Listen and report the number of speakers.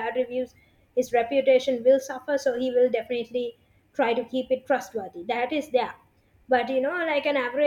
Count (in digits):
1